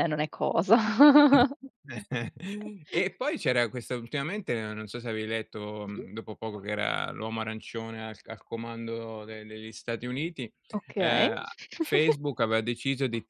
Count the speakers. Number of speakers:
two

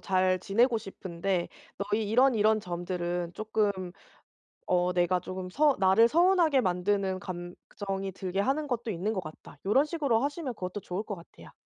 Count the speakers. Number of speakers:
one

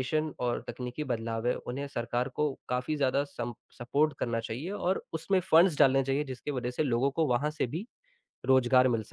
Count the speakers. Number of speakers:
one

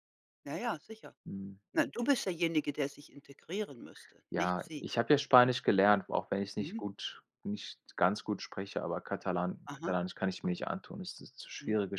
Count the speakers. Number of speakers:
two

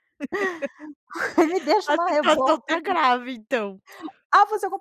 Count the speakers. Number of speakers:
two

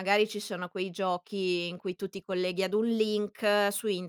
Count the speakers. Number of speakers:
one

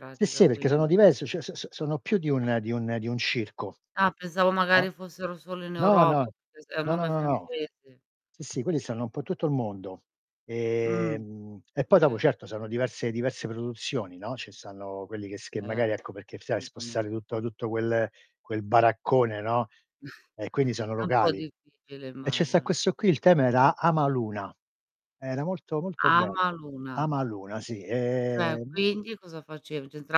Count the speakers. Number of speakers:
two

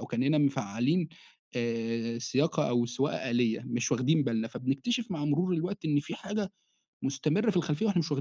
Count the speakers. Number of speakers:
one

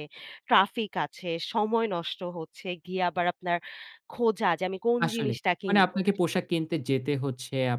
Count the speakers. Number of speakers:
two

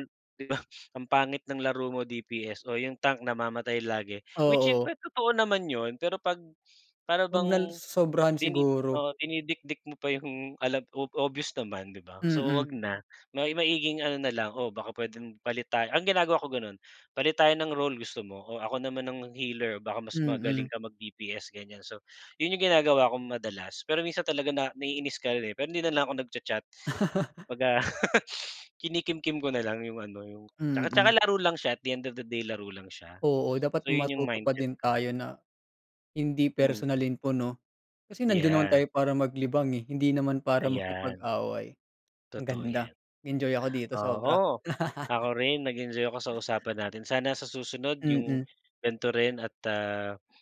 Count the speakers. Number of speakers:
two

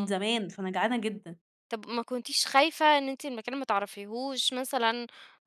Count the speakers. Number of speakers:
two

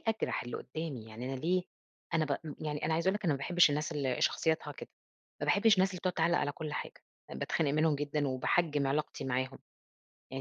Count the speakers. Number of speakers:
one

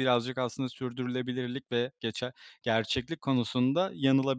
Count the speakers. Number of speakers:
one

